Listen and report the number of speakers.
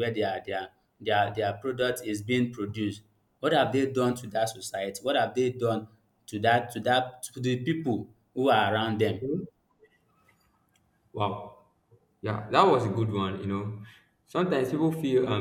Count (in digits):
2